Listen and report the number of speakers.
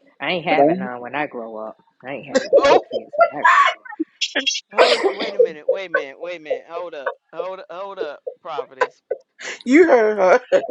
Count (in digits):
3